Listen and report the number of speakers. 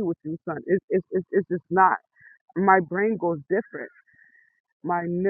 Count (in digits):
1